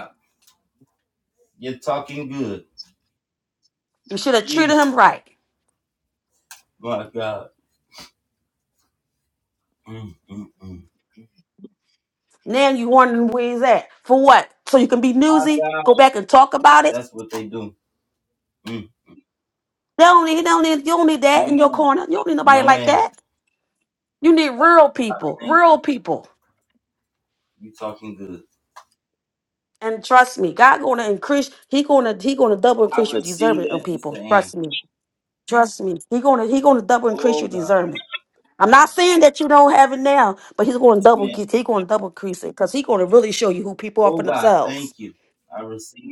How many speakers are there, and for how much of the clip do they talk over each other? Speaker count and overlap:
two, about 13%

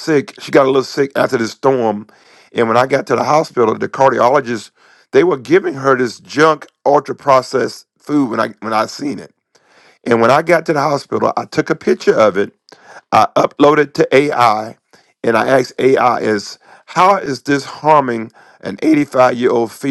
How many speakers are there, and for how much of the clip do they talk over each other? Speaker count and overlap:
one, no overlap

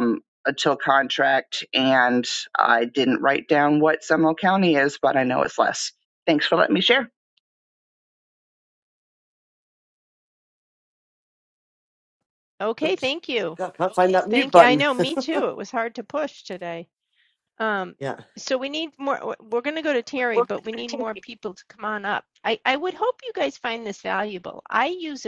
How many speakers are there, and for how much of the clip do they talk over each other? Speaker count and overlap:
three, about 3%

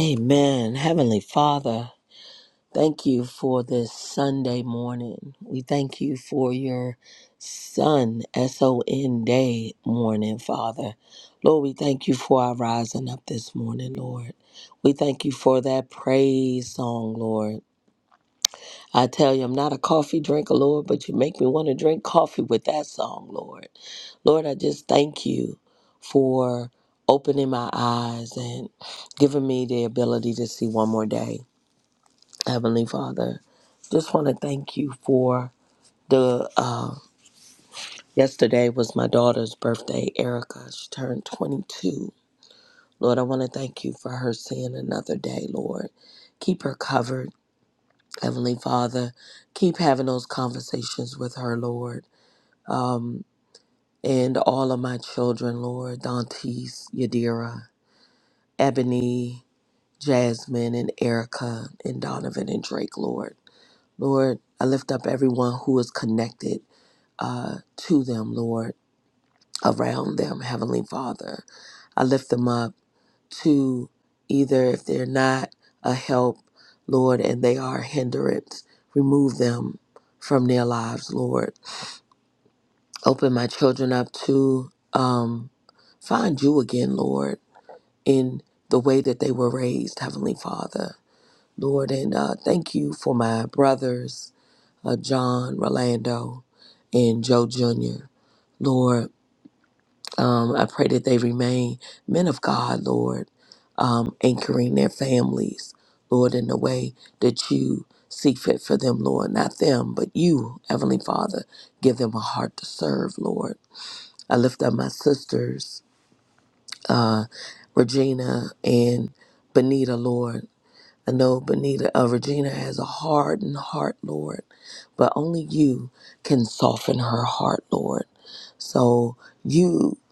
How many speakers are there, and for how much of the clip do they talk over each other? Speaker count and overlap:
one, no overlap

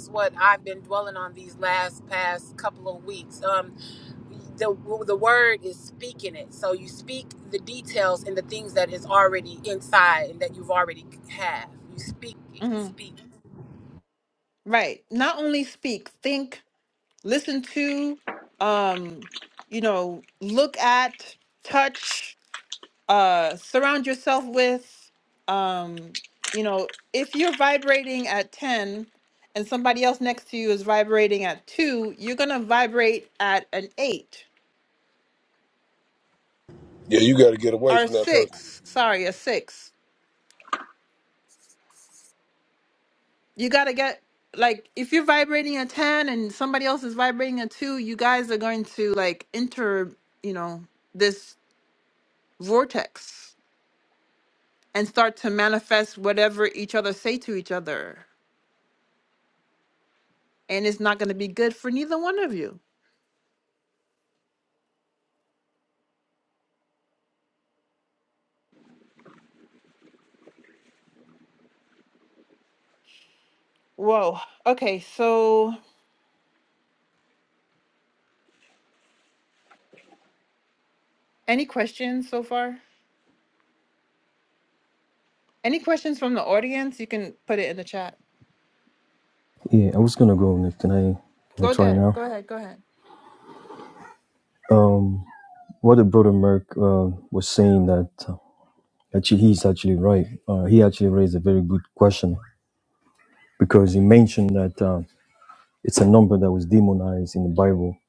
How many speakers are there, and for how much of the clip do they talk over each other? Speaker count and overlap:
four, about 1%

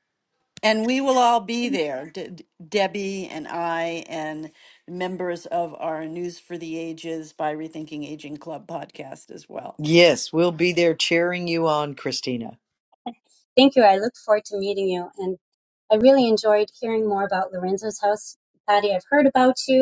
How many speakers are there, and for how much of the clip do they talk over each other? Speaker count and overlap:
three, no overlap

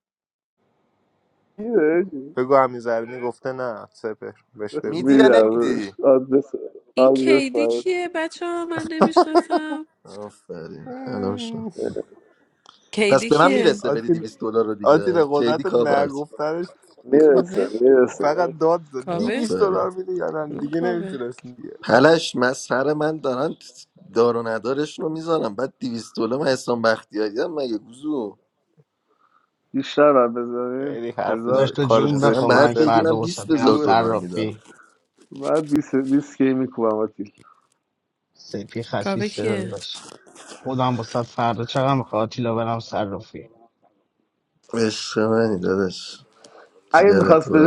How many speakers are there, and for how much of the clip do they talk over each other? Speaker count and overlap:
five, about 24%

